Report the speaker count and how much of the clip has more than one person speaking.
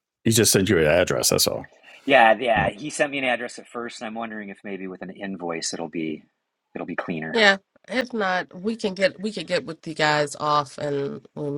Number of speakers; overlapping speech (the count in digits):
3, about 1%